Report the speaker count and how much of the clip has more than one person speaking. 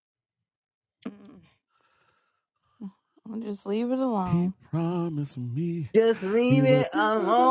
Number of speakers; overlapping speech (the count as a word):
three, about 19%